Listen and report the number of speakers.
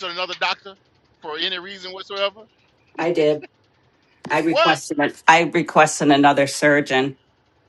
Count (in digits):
2